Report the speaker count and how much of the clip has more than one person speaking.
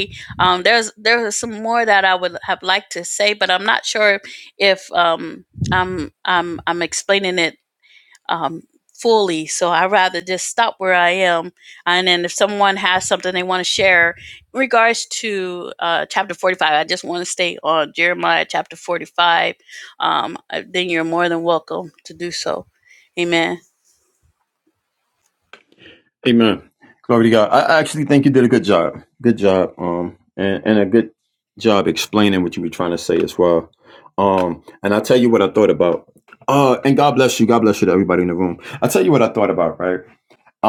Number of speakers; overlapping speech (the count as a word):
two, no overlap